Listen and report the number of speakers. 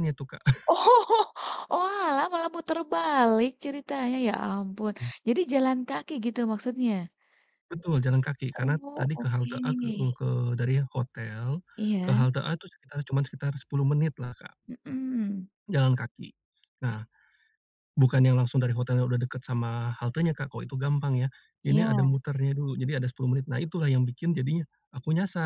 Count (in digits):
2